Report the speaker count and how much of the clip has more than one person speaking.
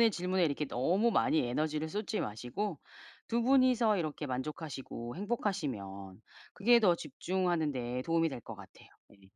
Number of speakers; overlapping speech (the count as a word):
one, no overlap